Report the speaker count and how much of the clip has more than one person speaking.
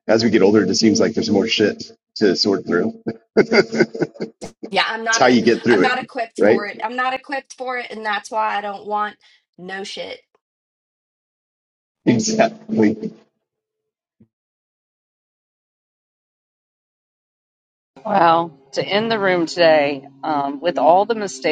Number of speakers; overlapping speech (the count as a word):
three, about 5%